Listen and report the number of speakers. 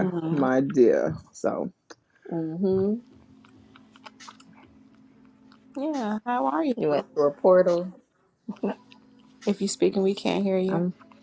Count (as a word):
three